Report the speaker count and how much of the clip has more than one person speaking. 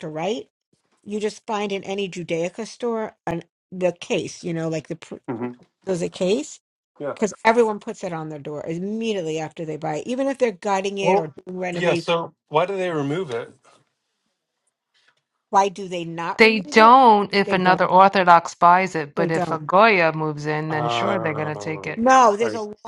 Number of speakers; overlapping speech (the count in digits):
3, about 14%